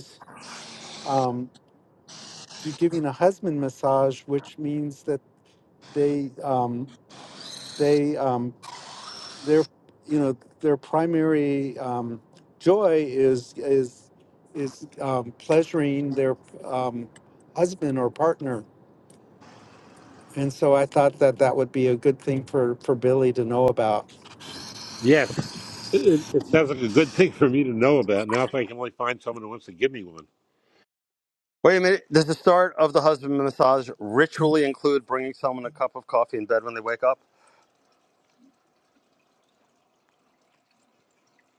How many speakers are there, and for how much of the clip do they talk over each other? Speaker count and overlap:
three, no overlap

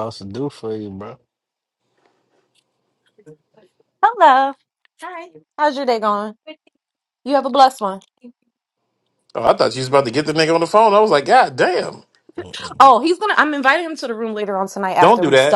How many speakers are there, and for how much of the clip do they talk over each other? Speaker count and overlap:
three, about 4%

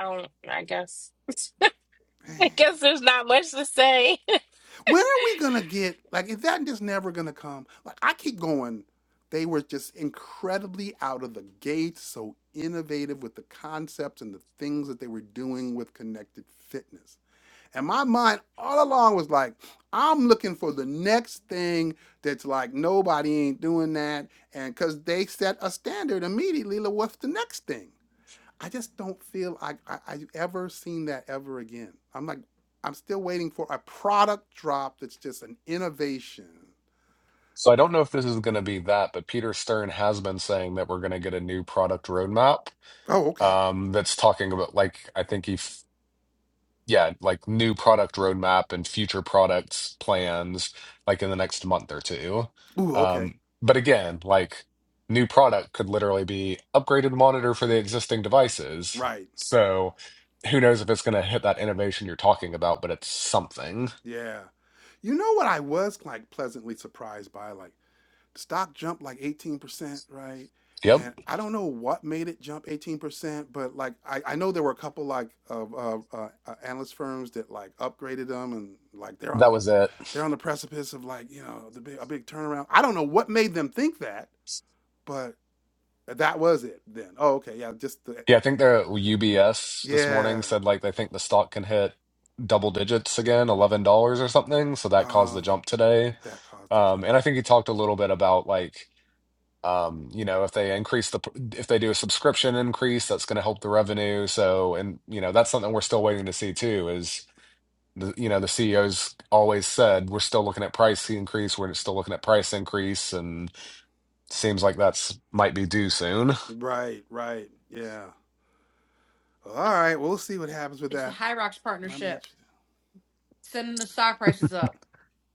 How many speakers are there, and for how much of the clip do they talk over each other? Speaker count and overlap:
four, about 2%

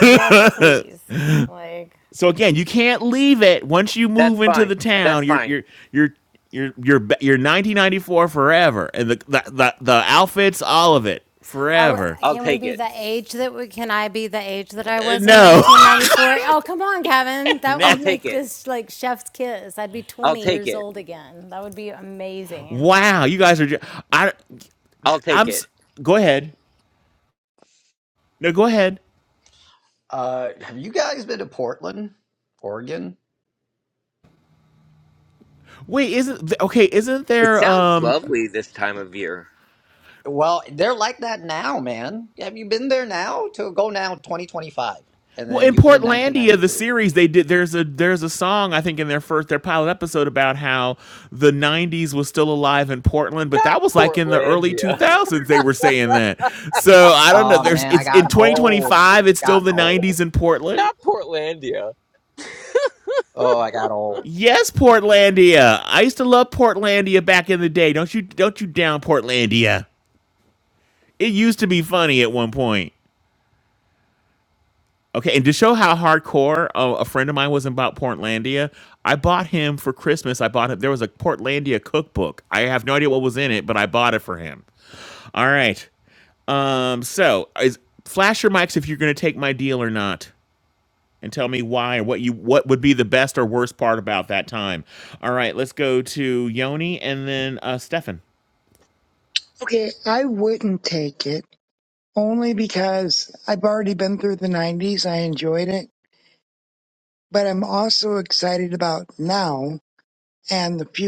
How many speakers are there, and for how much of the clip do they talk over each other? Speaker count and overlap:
five, about 10%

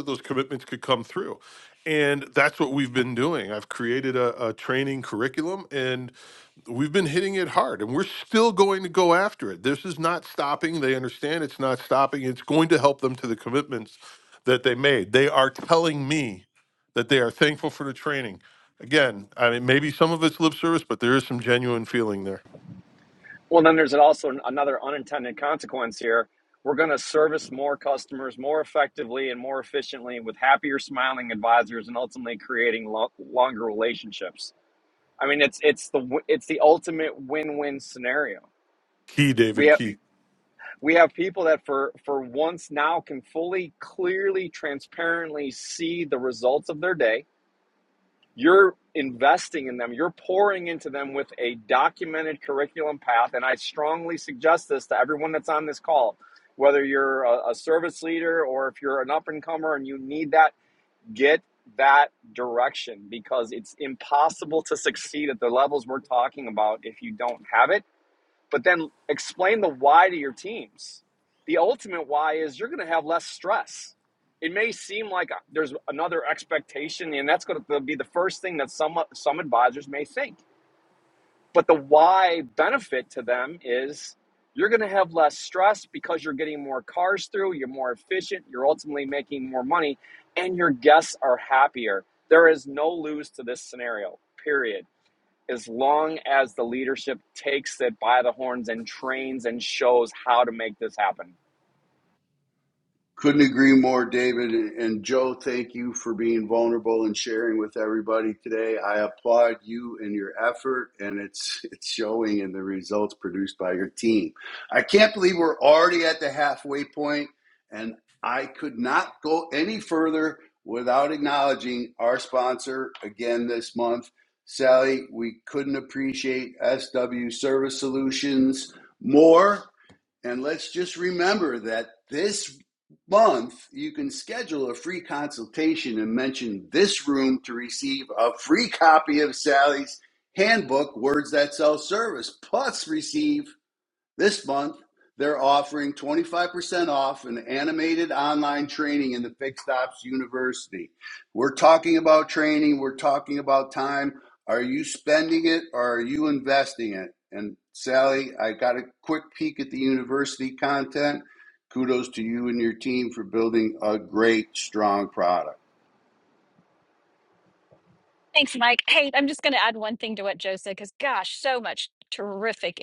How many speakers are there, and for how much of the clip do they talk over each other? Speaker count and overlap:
four, under 1%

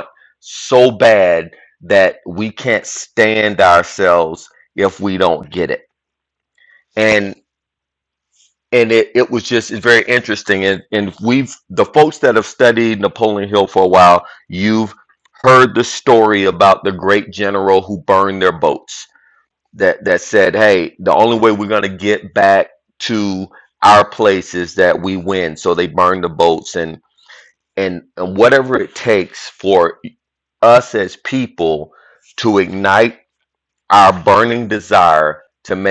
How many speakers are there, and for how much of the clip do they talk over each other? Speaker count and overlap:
one, no overlap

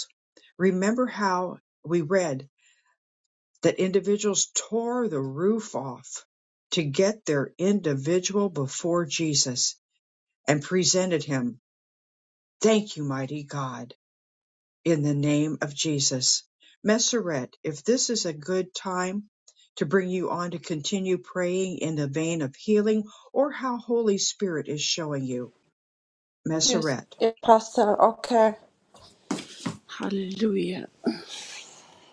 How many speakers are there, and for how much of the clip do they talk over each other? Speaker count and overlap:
two, about 1%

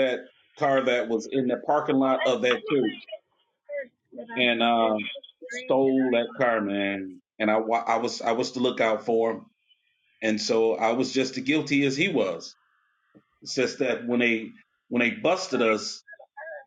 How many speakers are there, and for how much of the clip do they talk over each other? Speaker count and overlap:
one, no overlap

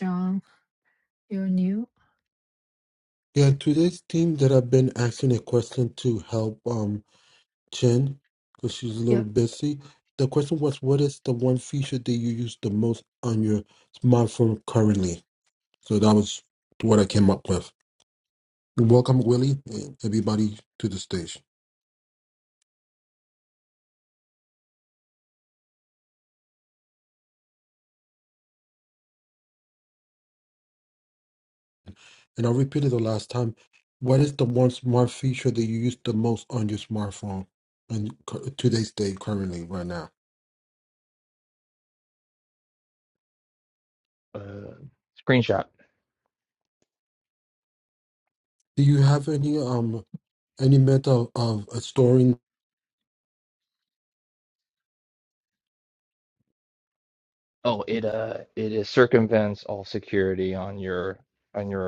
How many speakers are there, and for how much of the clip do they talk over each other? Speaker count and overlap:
three, under 1%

